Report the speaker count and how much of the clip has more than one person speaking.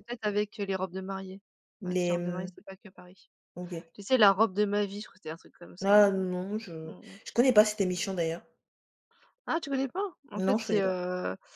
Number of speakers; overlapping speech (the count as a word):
two, about 14%